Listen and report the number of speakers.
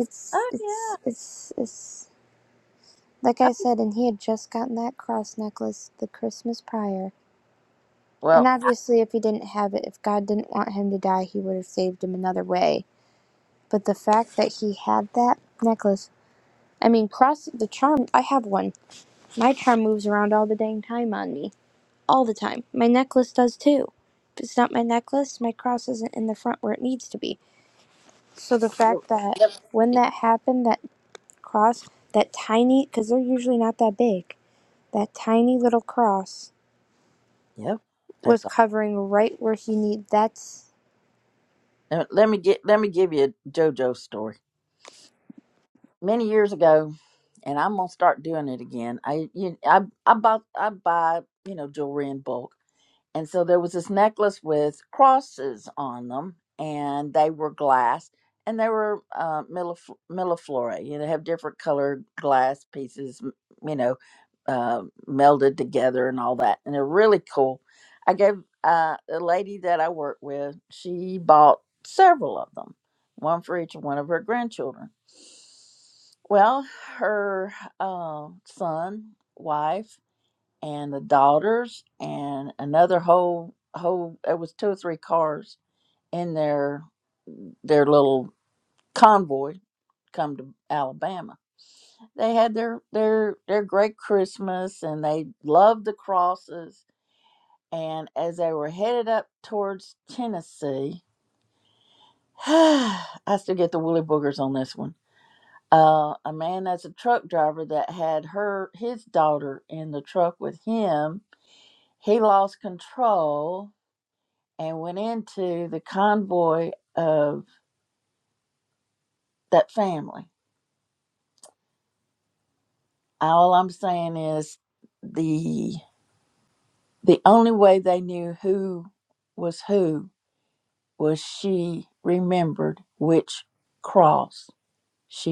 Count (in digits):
2